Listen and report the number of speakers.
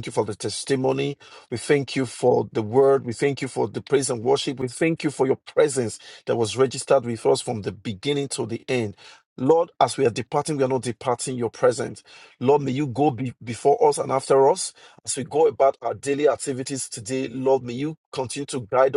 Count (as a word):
one